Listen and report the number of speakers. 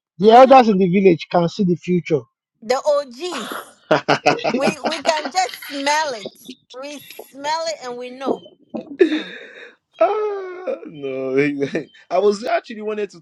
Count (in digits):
3